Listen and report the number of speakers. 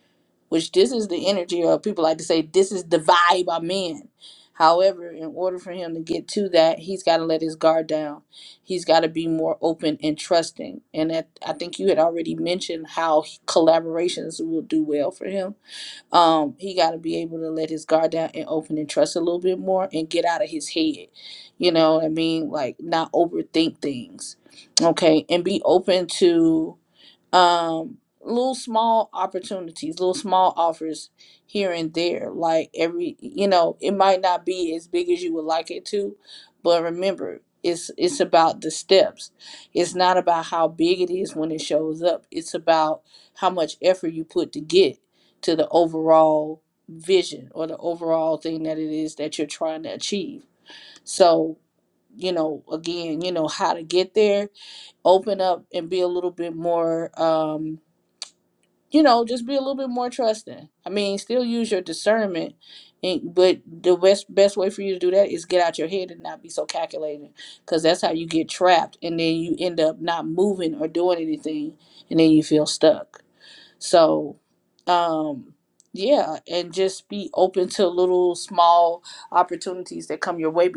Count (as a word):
one